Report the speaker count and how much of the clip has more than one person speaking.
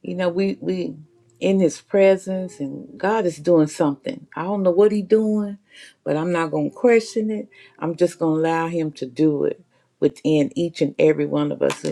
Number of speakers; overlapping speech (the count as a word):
one, no overlap